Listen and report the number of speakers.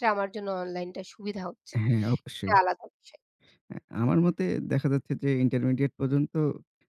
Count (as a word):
two